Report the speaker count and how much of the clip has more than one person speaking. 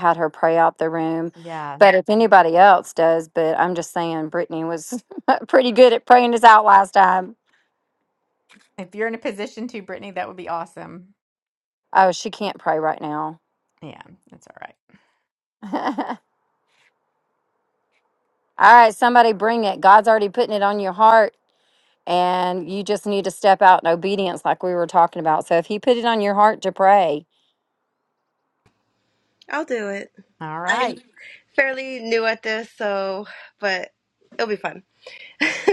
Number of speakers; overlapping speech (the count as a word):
three, about 1%